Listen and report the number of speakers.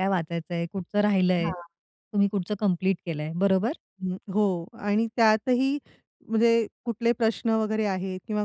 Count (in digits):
2